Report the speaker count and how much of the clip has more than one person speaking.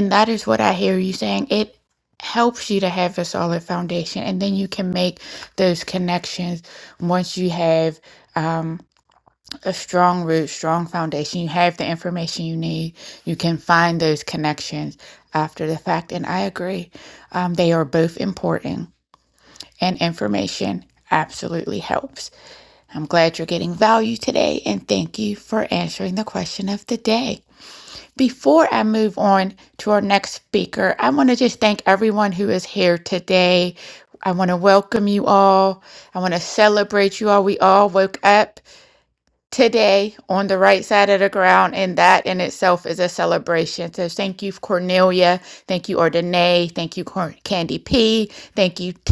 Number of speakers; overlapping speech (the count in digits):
1, no overlap